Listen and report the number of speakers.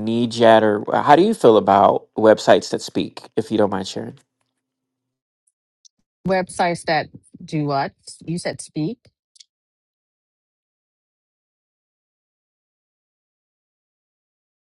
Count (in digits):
2